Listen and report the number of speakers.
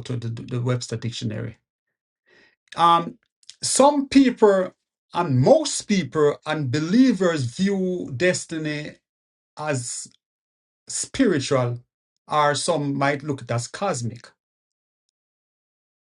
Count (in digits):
1